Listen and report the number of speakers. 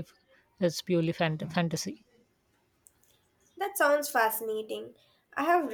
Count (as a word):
two